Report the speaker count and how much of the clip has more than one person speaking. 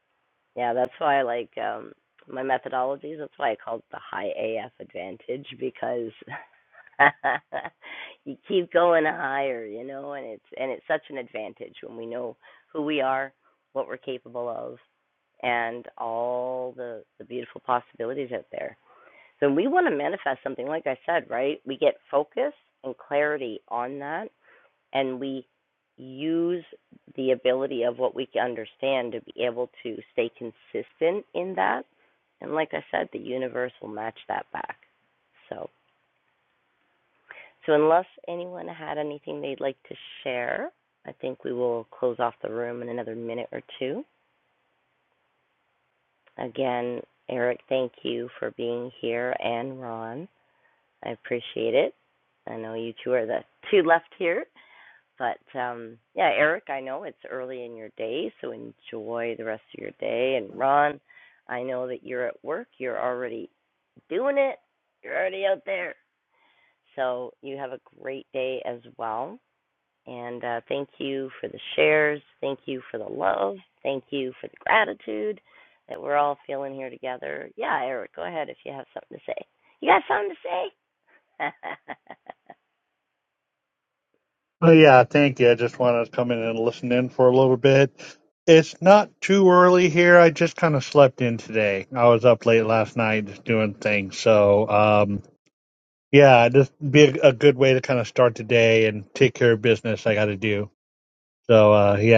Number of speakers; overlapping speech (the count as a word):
two, no overlap